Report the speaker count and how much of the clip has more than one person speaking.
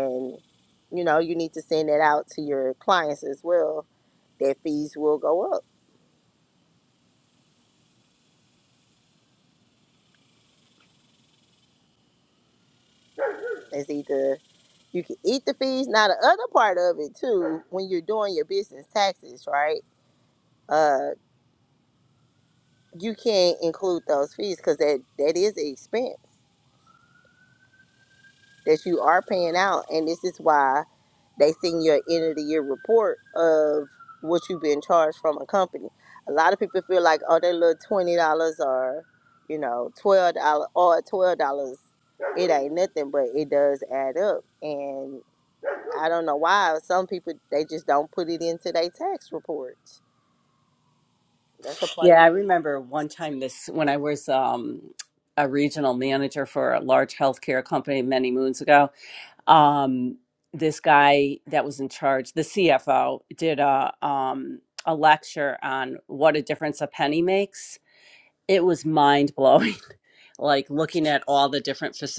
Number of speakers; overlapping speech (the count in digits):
2, under 1%